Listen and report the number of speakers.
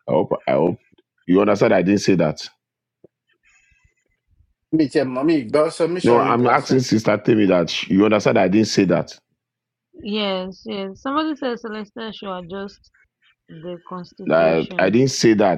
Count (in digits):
3